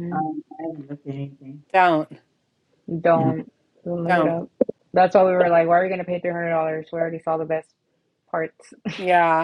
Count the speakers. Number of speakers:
3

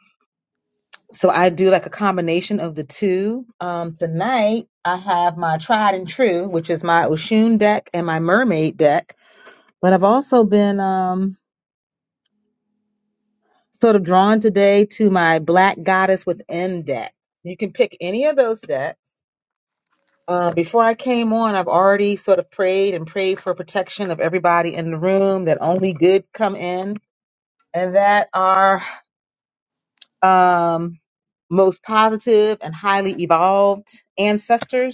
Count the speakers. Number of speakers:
1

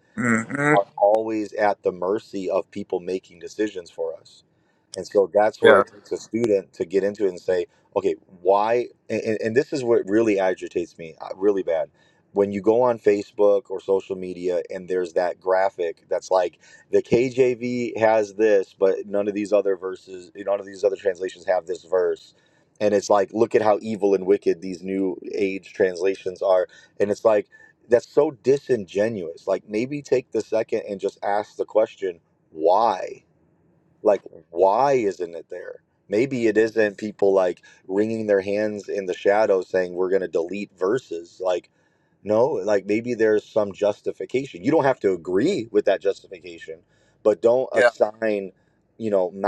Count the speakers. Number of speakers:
2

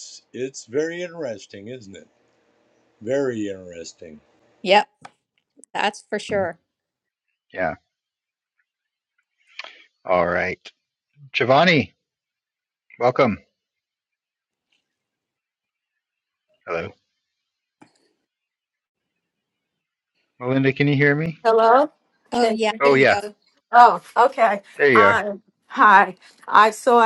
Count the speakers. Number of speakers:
4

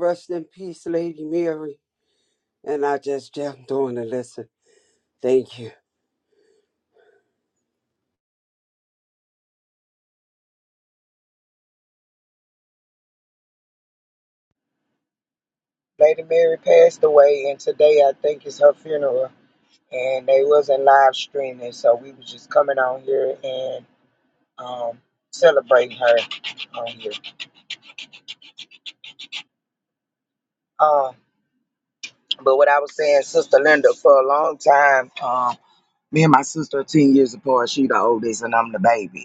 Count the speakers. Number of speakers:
2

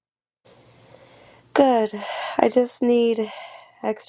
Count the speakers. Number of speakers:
1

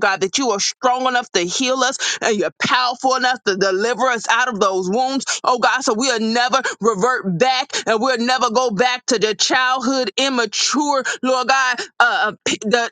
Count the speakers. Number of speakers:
1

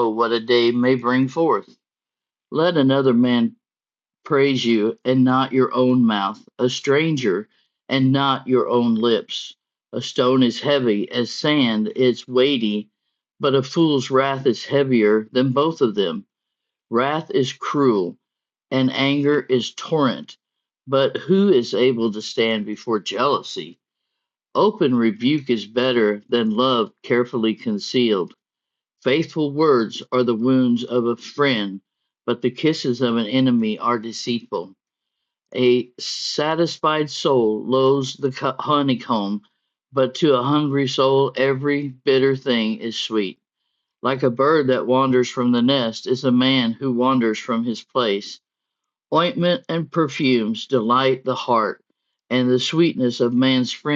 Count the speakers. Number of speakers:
1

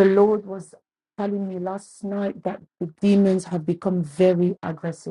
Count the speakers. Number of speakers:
1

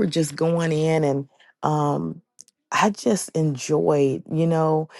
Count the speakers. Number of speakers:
1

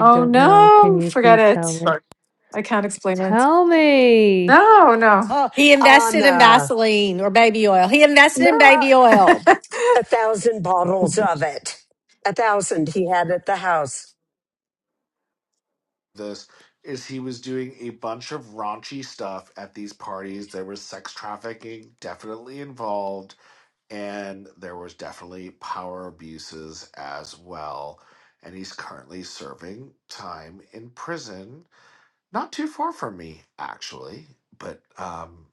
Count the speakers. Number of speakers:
5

